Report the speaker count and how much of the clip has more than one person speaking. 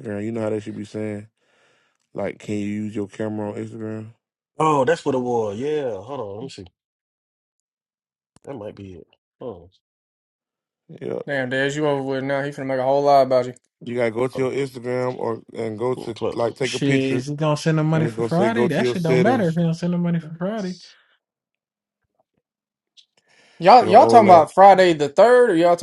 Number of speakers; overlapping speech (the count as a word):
four, about 14%